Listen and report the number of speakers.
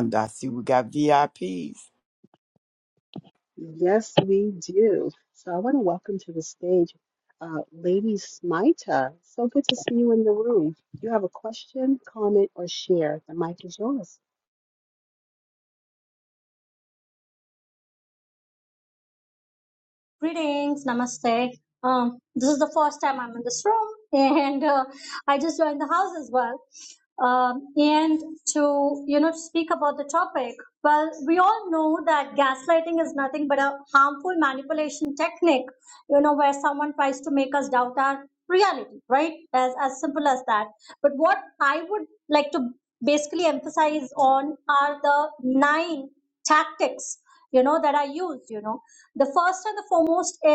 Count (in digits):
3